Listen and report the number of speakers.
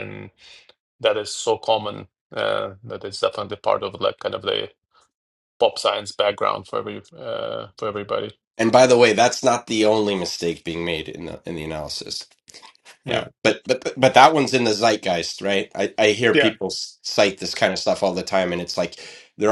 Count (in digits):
2